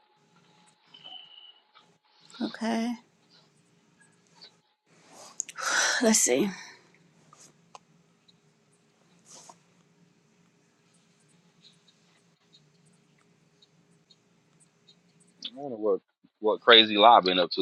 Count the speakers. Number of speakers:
2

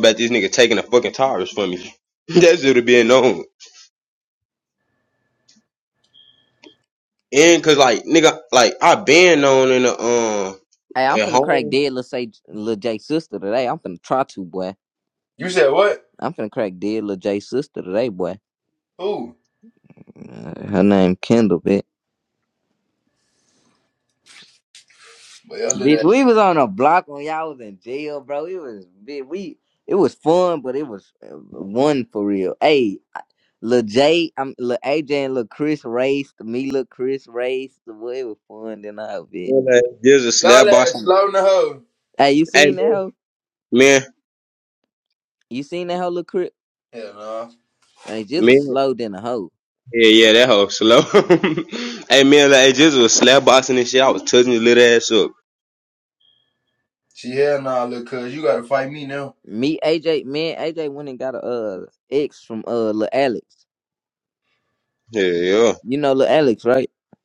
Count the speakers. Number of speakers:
3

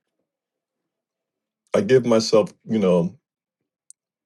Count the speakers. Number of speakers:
1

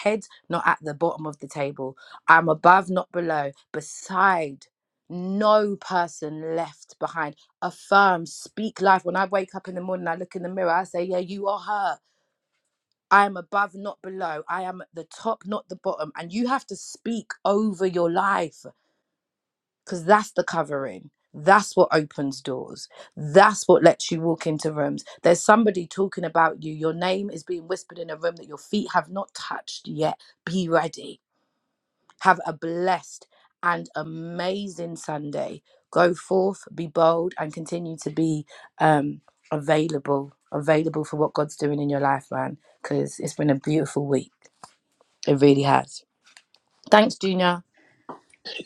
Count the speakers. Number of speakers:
1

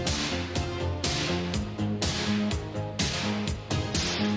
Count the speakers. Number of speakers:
0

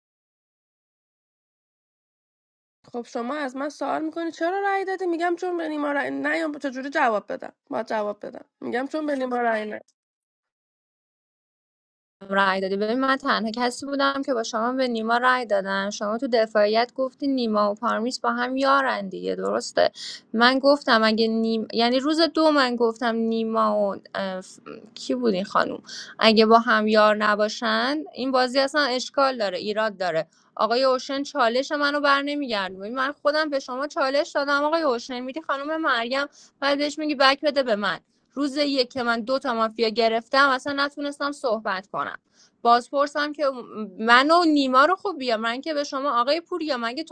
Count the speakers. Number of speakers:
2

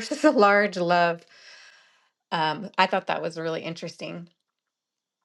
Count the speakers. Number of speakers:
1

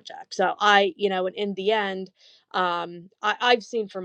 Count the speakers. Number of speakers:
1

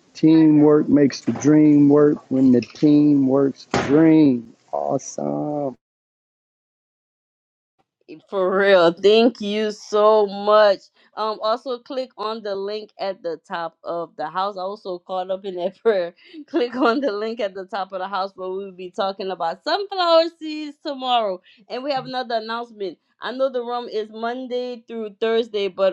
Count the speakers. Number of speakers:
2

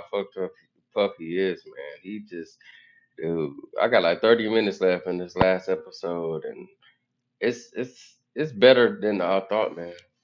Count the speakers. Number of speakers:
1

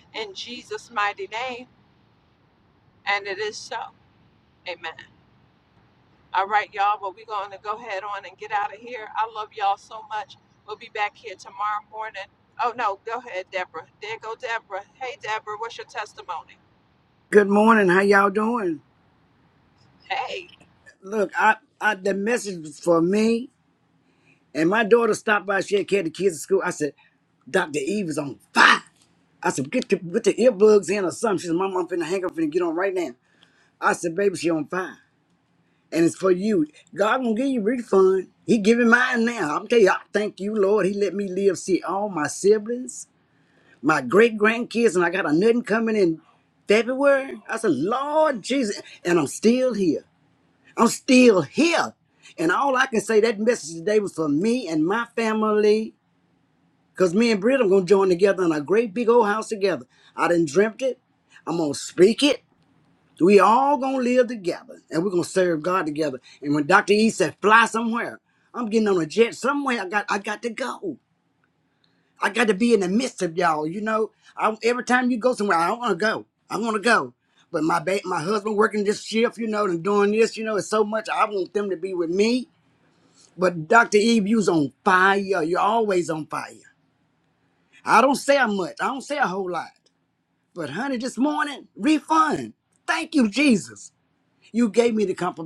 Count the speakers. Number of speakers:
2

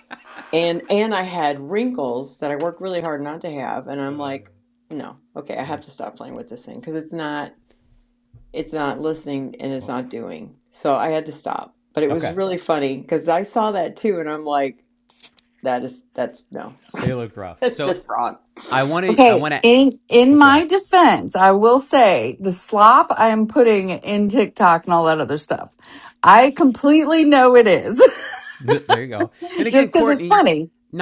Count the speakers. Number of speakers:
3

